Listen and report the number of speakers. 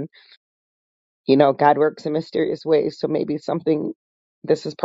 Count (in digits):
1